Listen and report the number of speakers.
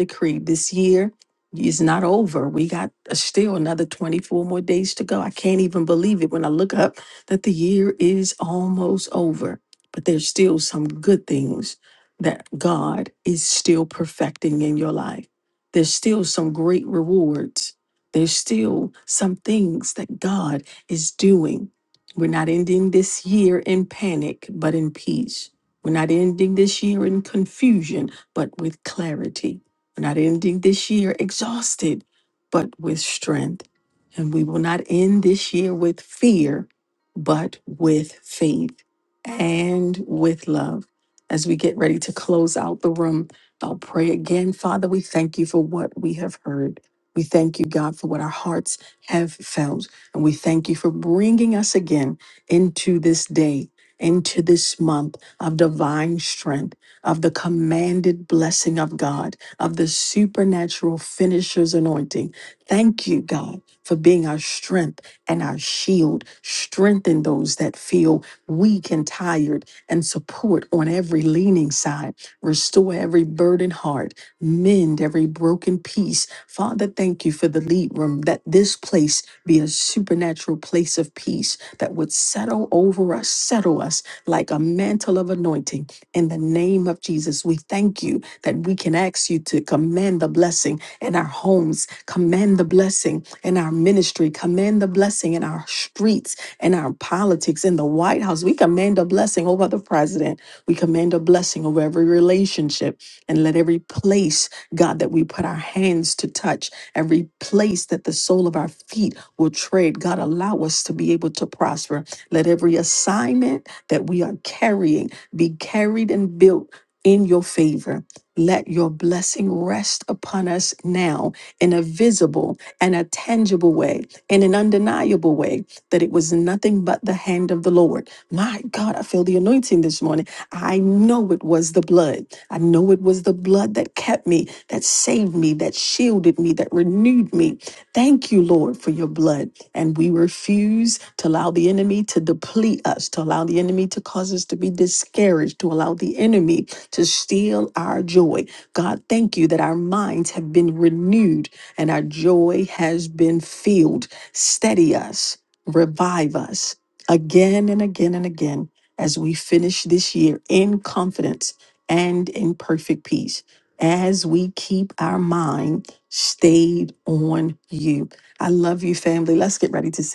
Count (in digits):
1